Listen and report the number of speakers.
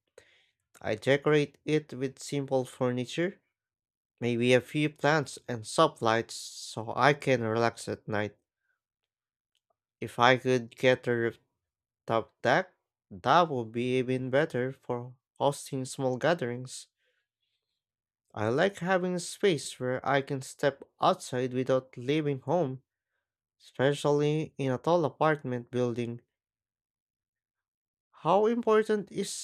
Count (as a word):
one